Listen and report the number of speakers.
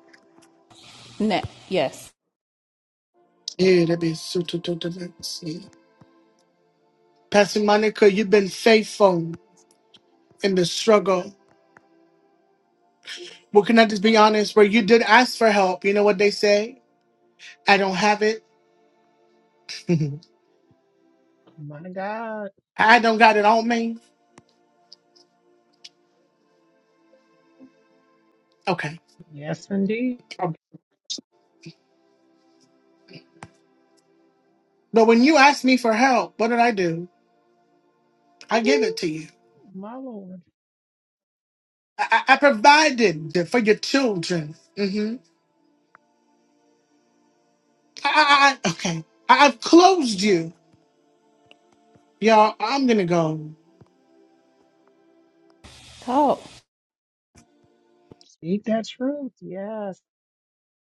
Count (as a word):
three